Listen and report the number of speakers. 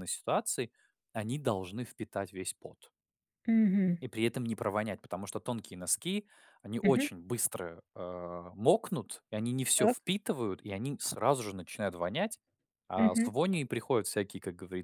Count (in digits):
2